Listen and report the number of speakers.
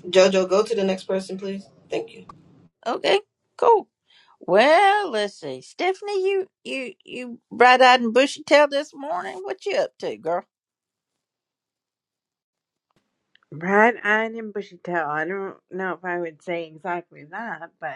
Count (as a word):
three